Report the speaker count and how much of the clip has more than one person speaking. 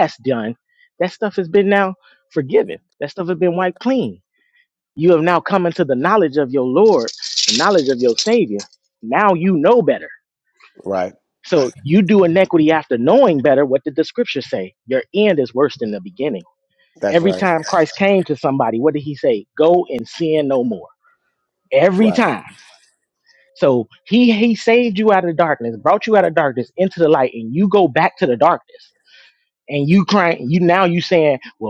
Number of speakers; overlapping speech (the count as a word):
two, about 2%